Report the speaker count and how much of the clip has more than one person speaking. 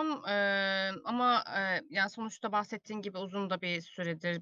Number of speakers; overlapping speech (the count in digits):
1, no overlap